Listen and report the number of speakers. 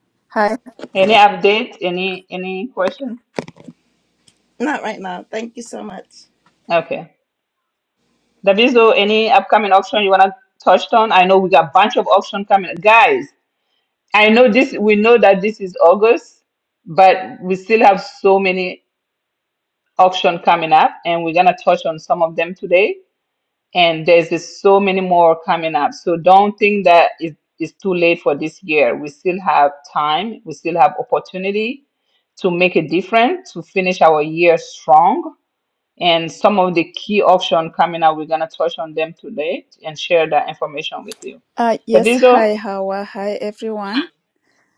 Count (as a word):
three